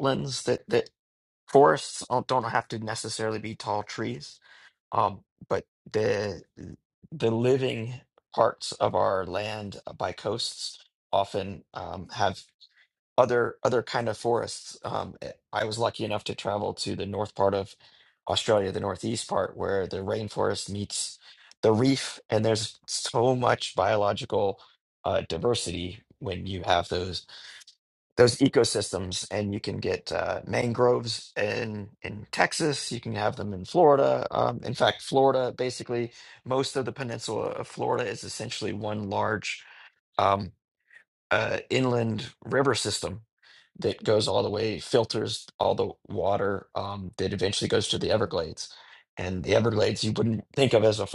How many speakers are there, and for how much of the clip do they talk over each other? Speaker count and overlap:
one, no overlap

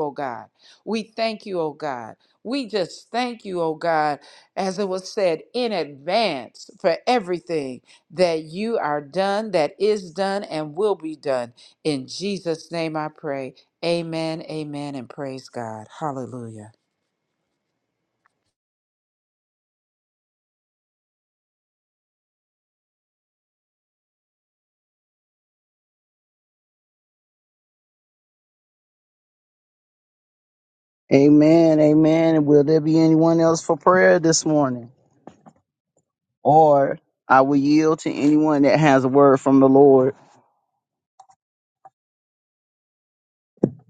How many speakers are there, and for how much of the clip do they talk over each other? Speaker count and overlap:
two, no overlap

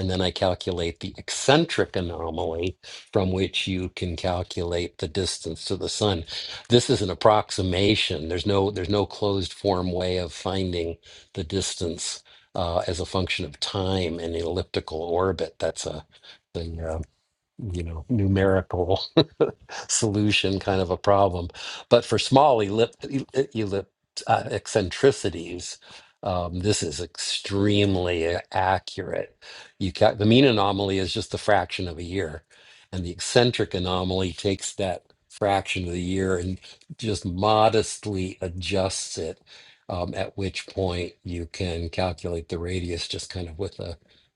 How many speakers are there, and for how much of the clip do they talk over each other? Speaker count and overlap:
one, no overlap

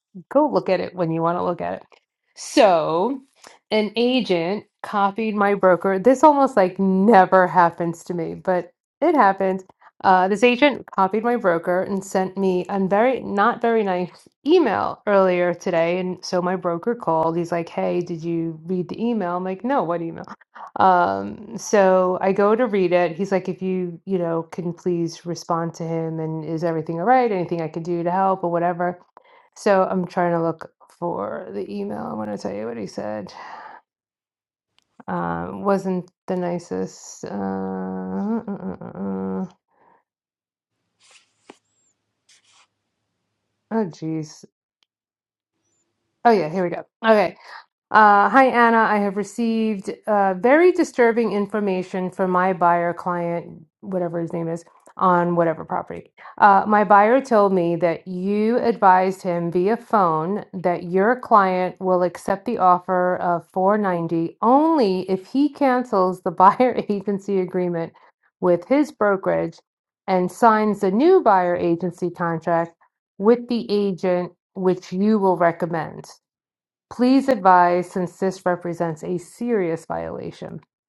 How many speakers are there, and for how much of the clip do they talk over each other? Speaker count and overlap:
one, no overlap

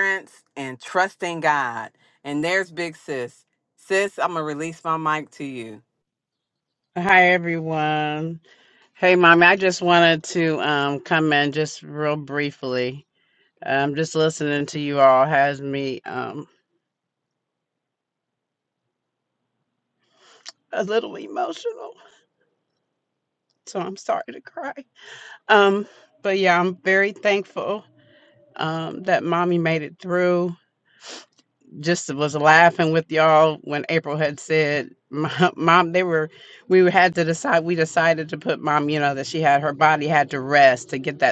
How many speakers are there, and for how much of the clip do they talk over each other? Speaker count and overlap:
two, no overlap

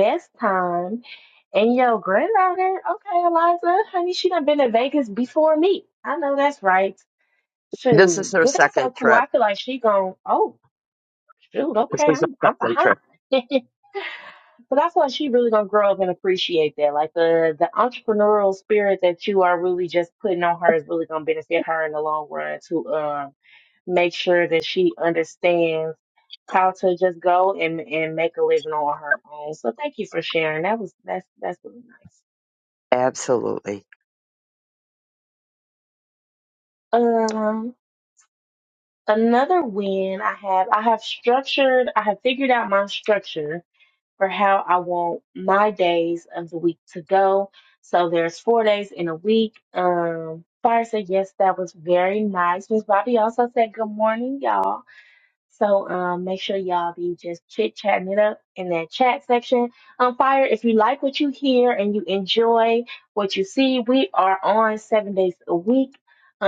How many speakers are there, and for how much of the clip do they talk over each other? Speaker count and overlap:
two, about 4%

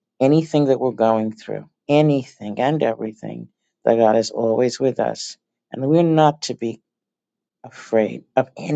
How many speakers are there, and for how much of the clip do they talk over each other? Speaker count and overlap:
one, no overlap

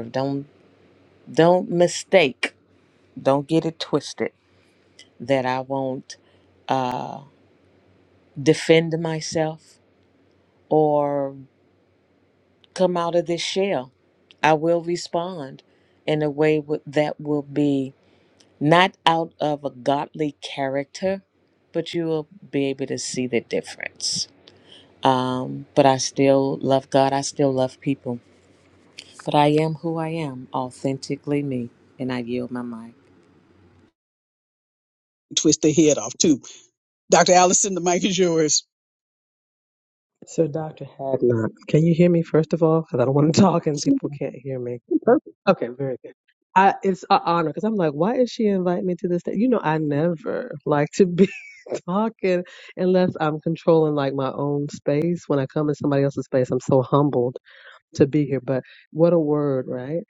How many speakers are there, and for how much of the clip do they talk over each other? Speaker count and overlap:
three, no overlap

